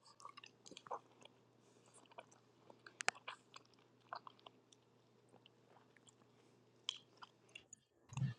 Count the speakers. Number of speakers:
zero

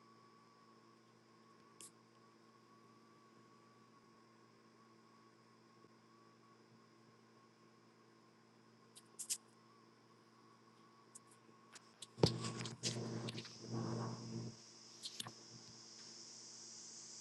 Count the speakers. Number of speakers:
zero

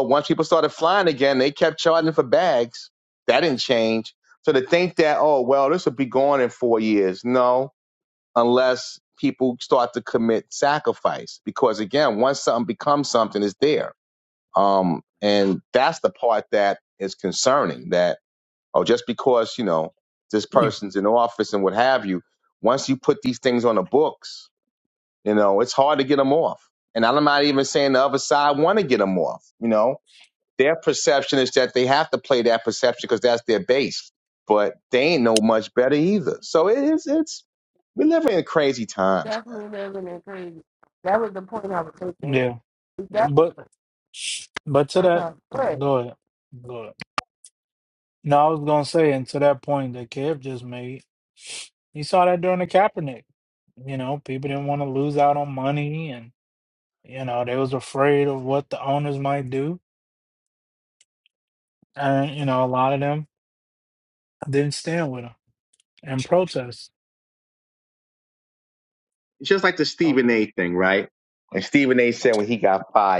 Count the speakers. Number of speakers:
three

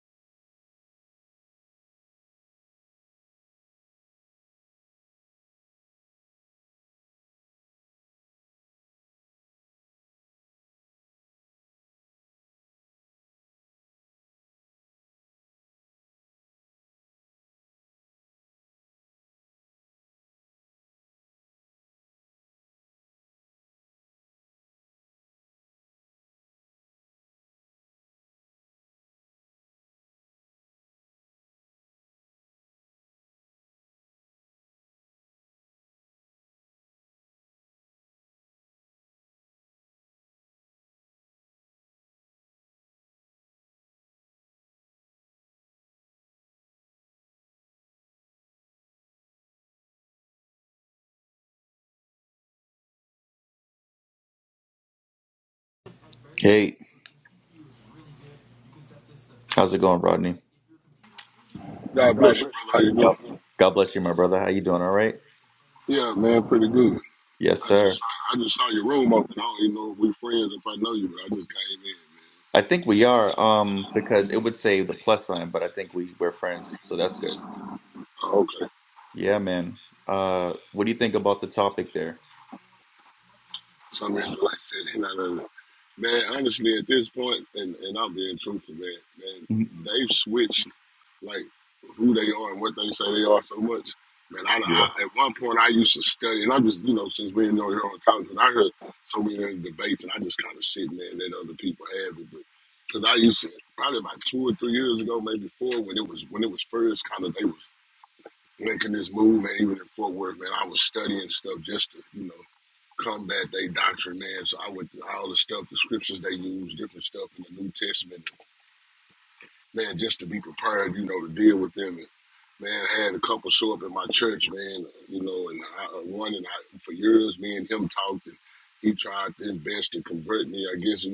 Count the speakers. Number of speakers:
two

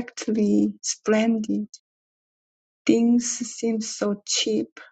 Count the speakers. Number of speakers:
one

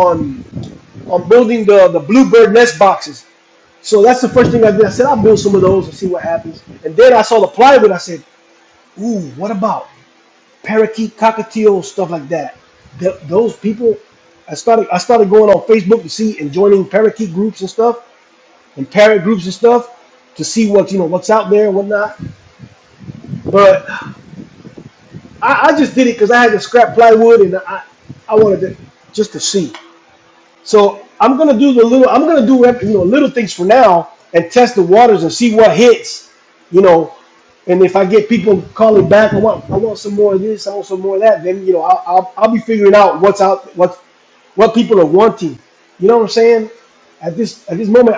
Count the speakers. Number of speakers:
one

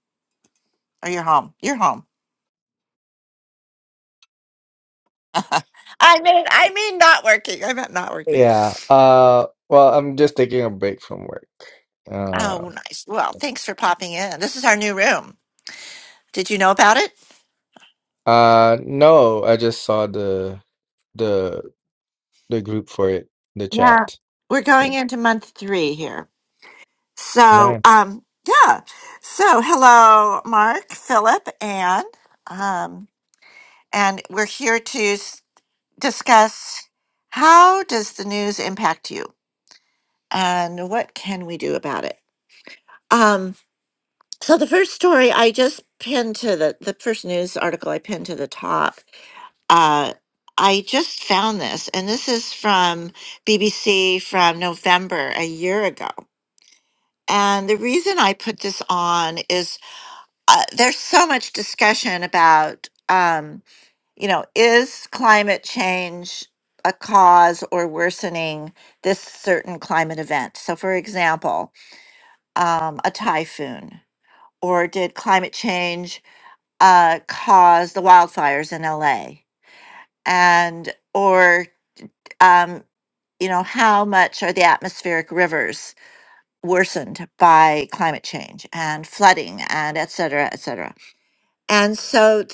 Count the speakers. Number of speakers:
two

